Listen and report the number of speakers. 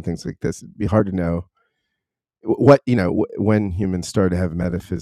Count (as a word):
one